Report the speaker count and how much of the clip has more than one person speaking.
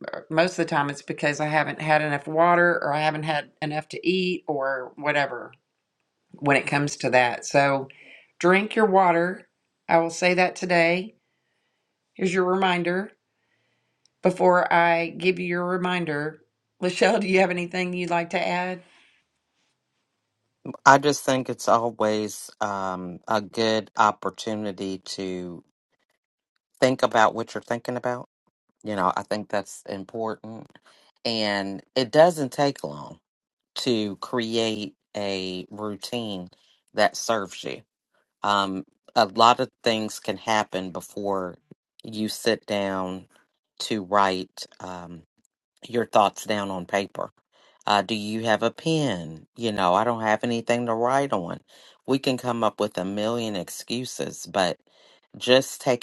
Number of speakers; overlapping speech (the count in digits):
2, no overlap